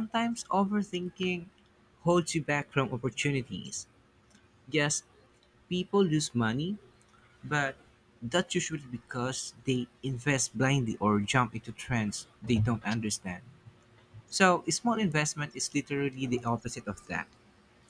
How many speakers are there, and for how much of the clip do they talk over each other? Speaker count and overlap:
one, no overlap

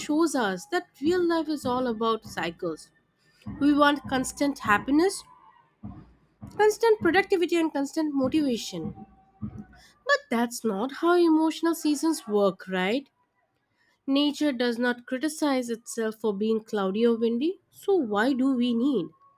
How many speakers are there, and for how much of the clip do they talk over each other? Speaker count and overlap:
one, no overlap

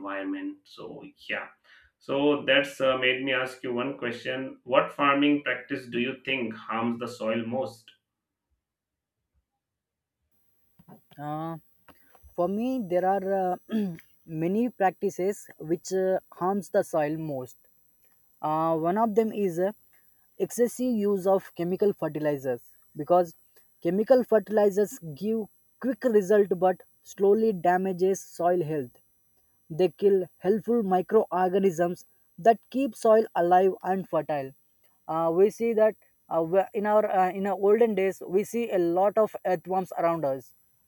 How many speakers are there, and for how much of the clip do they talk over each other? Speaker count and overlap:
two, no overlap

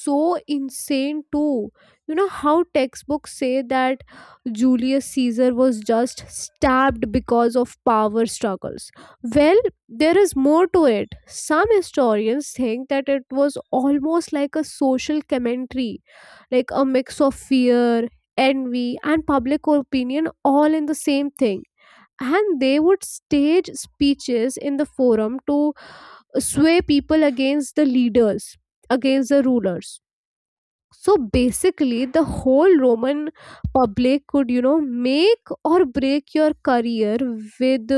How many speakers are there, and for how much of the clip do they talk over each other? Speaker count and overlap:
one, no overlap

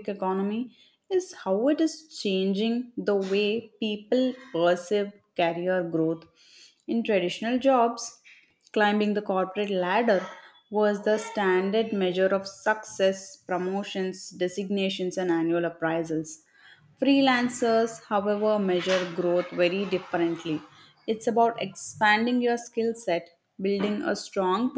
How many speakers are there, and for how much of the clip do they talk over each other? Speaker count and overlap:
one, no overlap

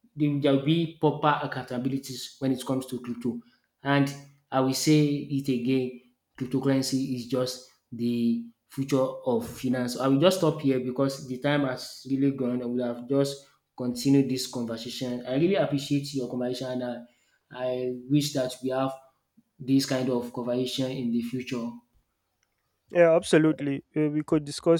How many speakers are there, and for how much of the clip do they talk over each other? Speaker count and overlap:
two, no overlap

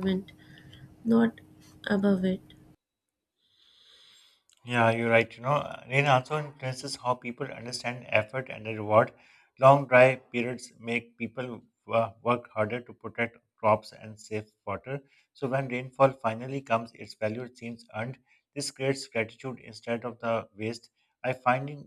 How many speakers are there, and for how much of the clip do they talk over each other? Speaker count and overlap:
two, no overlap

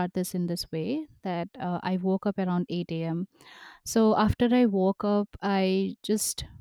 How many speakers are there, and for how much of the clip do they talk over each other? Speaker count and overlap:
one, no overlap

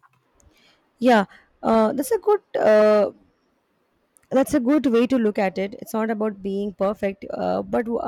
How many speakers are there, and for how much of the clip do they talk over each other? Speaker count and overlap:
one, no overlap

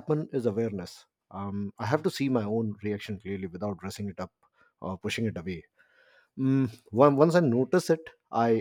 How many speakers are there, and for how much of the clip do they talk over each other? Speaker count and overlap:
one, no overlap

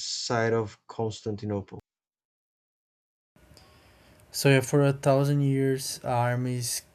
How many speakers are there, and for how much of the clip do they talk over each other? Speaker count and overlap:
two, no overlap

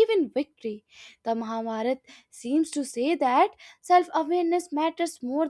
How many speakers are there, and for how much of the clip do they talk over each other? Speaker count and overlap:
one, no overlap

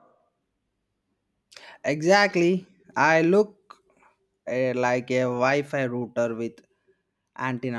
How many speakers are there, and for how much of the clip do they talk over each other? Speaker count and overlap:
one, no overlap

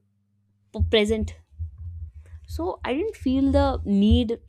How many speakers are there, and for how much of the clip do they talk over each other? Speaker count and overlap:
one, no overlap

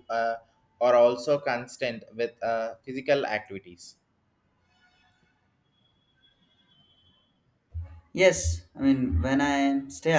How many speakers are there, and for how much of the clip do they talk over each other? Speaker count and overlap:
two, no overlap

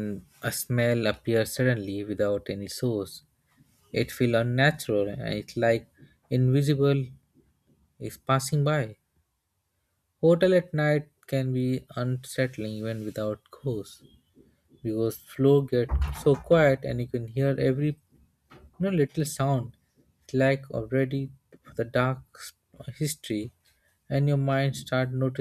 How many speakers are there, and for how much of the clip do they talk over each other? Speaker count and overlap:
one, no overlap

